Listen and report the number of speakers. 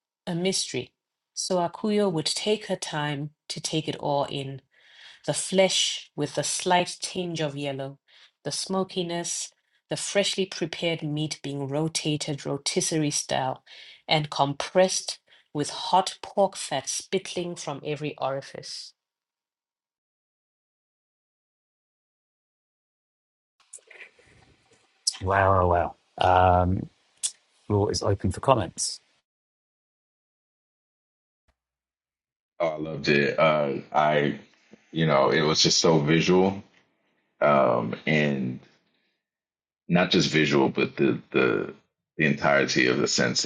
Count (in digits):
3